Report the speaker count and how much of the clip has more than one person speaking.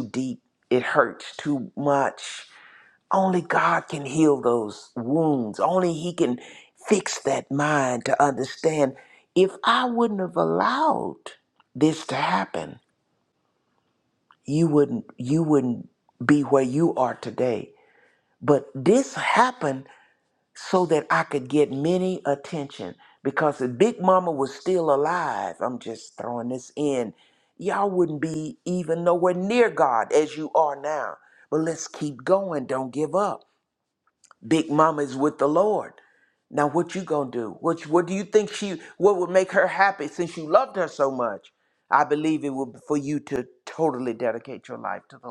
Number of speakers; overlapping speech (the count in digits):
1, no overlap